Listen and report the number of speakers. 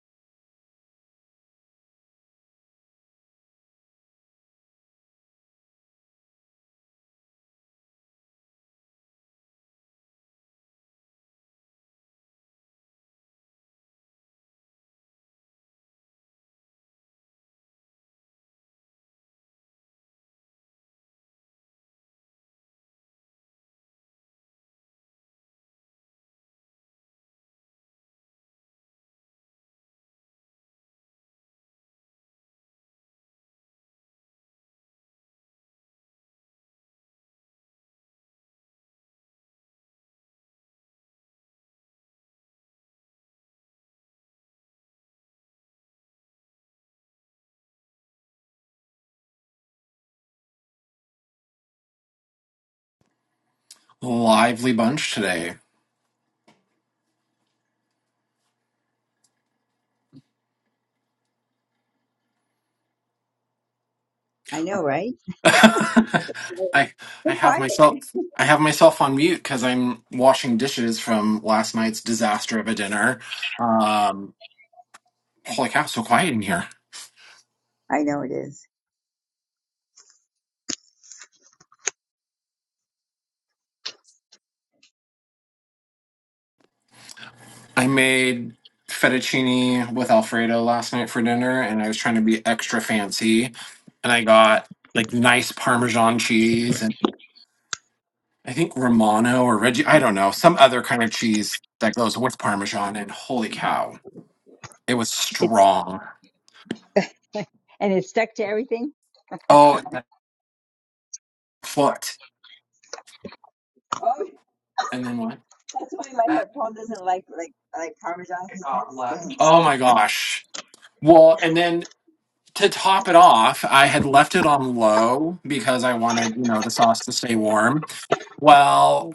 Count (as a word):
two